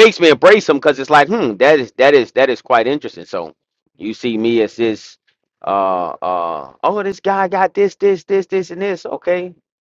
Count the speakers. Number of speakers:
1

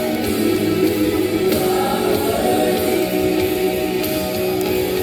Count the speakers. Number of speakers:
0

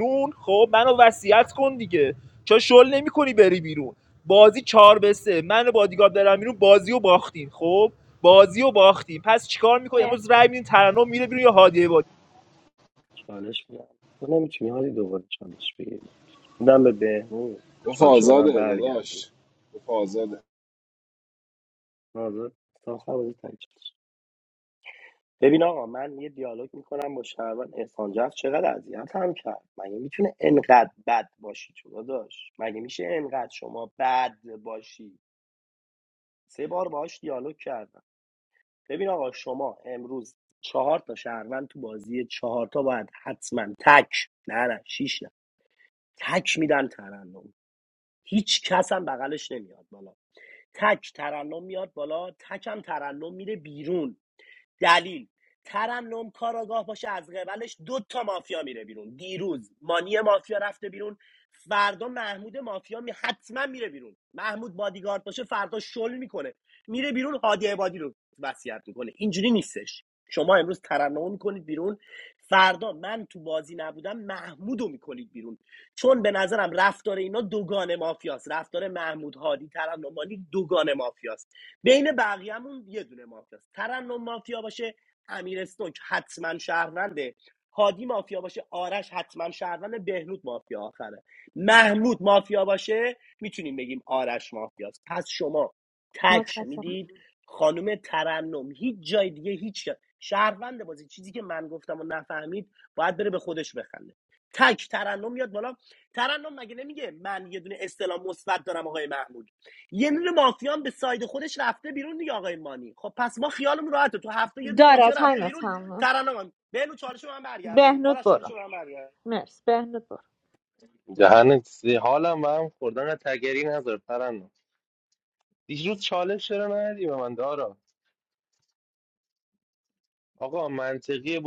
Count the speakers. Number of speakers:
5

